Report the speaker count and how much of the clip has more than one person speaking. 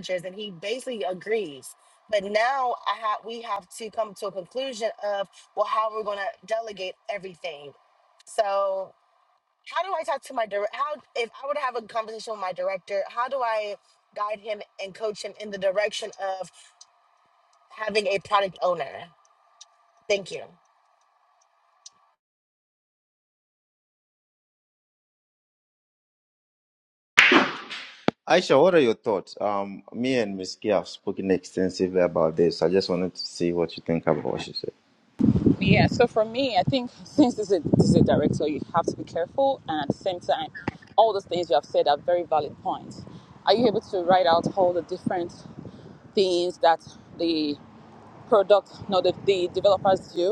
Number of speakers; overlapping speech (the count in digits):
3, no overlap